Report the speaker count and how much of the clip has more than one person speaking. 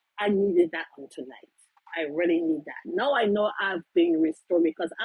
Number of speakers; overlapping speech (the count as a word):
one, no overlap